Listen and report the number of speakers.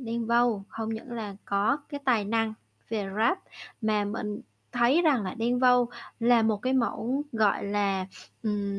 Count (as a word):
one